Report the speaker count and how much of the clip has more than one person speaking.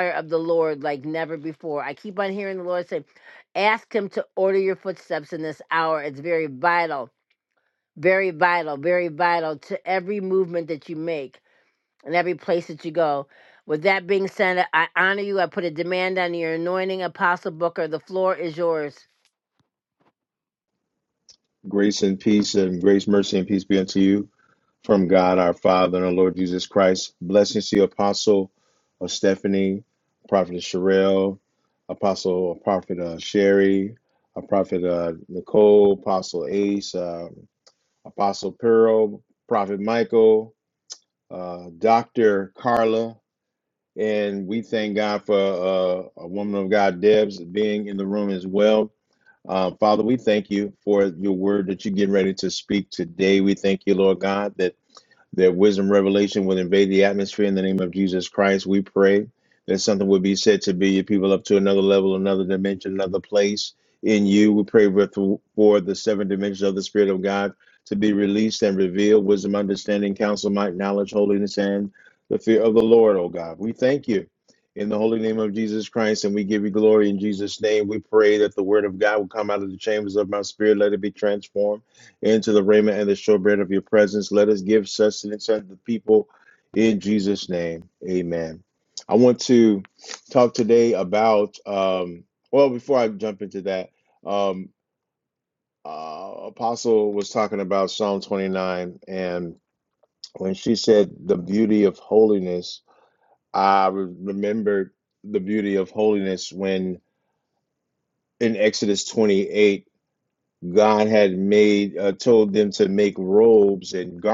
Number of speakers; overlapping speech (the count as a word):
two, no overlap